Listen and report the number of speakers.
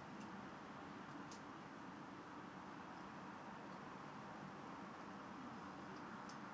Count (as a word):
zero